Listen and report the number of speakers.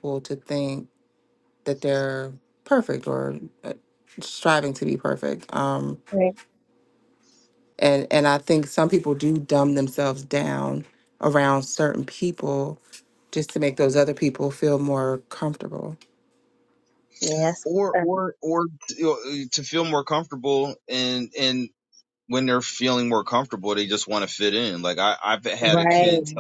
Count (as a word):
three